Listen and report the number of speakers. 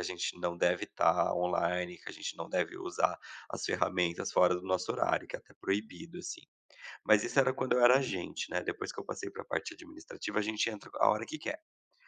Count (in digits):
1